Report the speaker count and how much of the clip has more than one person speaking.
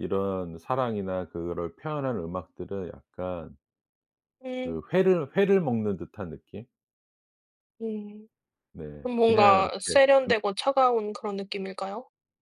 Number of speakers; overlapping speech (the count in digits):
2, about 12%